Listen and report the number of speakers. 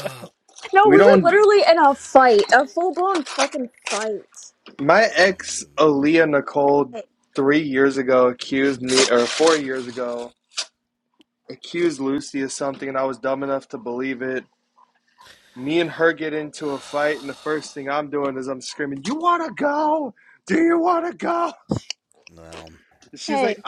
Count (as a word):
three